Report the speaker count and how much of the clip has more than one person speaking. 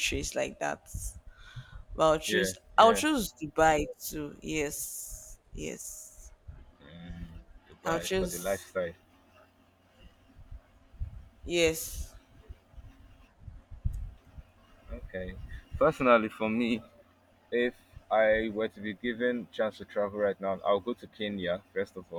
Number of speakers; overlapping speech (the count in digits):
2, about 6%